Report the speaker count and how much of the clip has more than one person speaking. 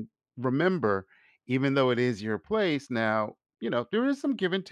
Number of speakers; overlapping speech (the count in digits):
1, no overlap